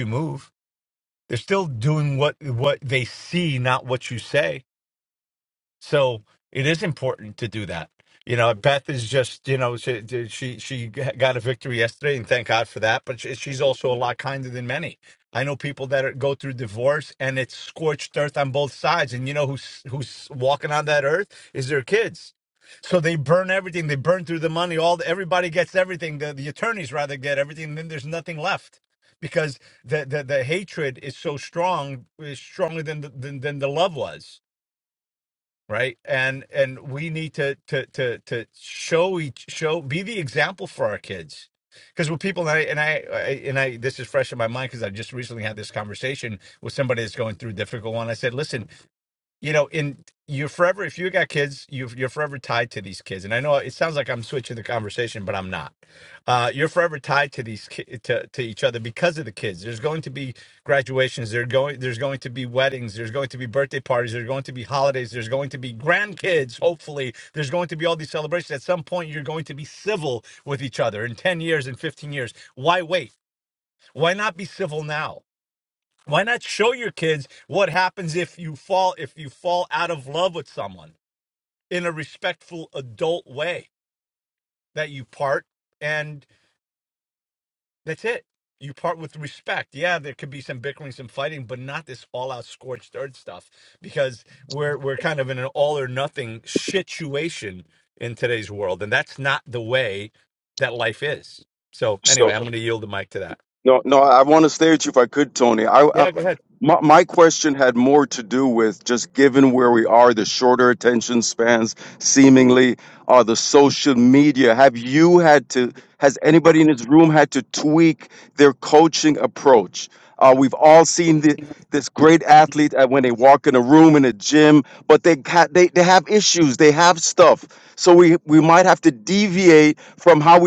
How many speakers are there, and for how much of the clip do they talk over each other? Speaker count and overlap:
2, under 1%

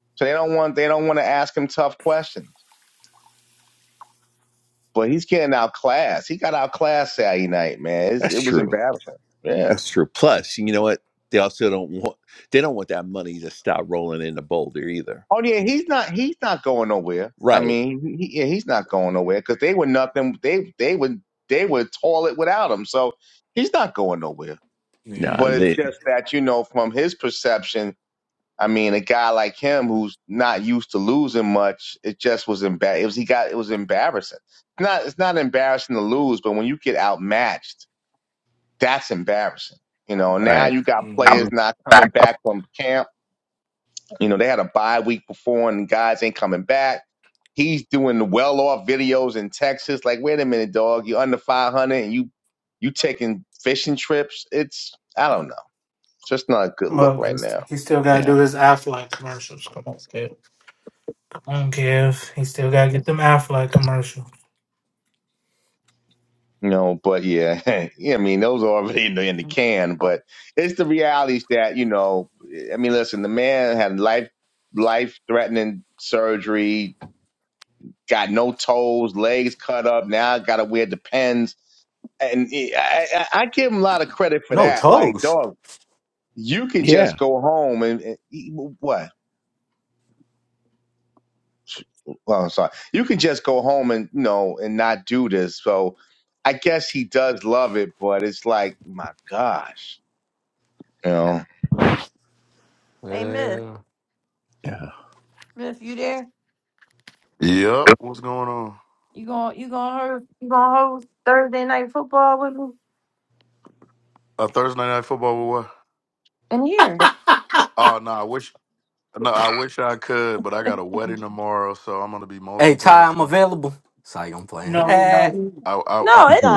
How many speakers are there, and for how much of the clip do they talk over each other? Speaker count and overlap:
6, about 5%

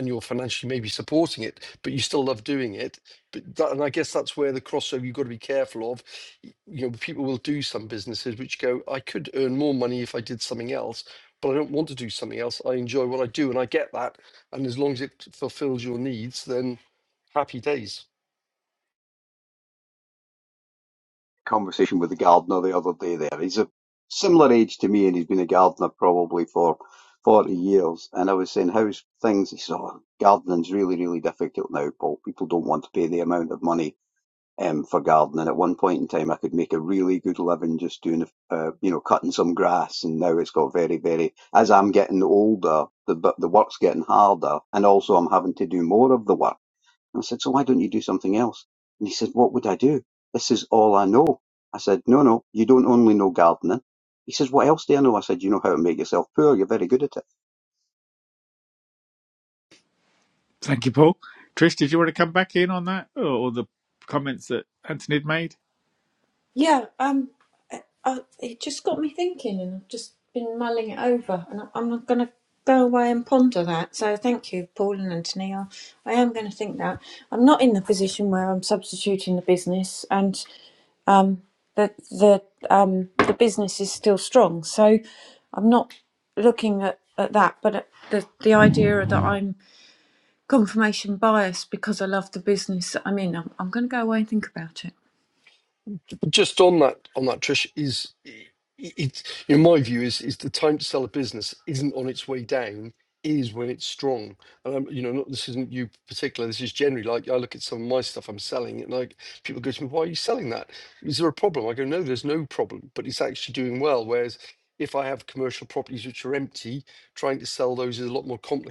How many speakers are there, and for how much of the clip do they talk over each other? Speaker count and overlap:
4, no overlap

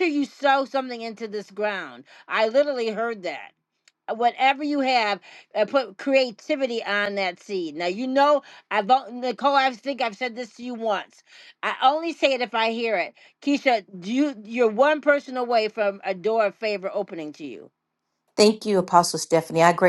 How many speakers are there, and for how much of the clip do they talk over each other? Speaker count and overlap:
2, no overlap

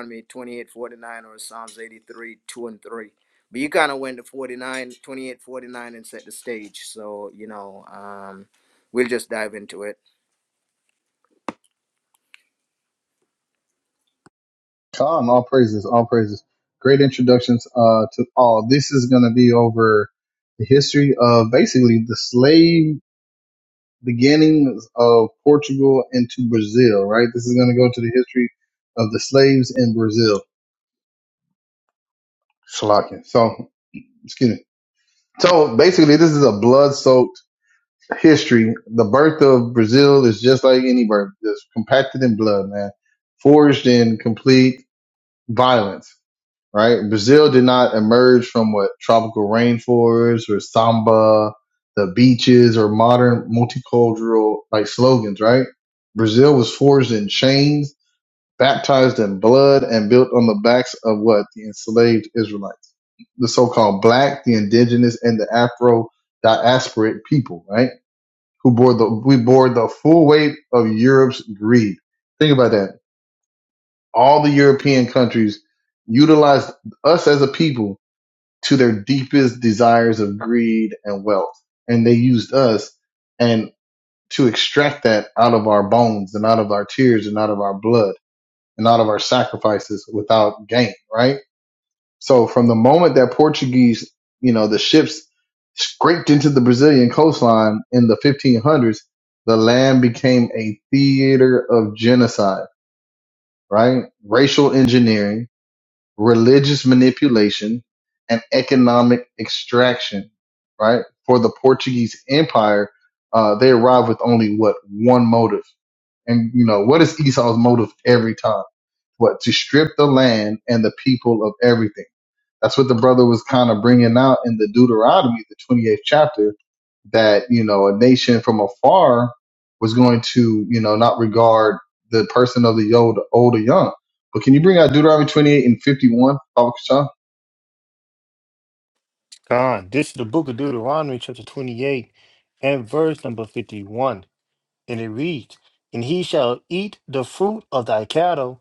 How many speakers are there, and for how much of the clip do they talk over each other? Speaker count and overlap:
3, no overlap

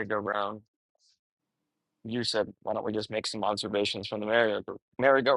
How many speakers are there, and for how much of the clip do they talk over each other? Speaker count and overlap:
1, no overlap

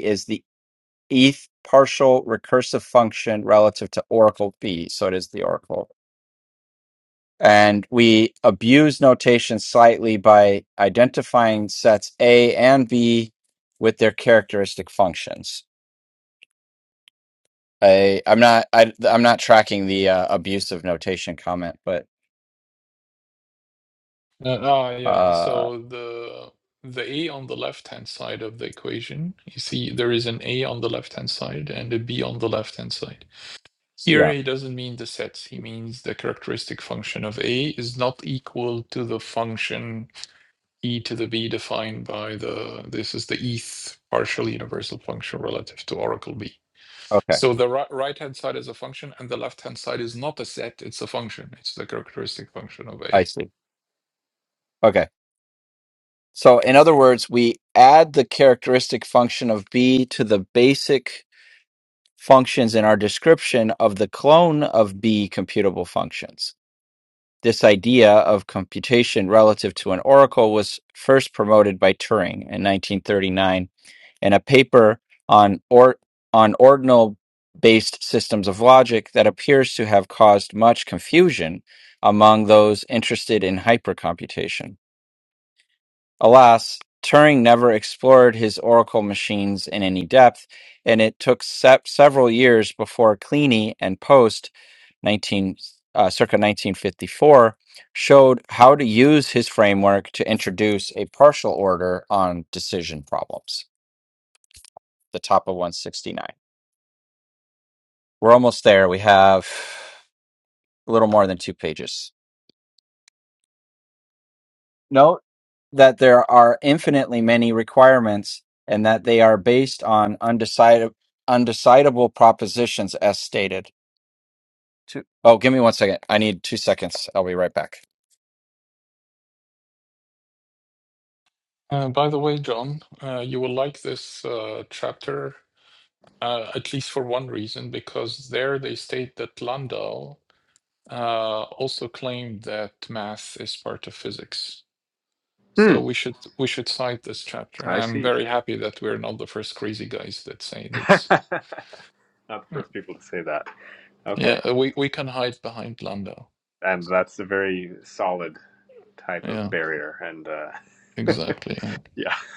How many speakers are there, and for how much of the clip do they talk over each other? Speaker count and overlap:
3, about 2%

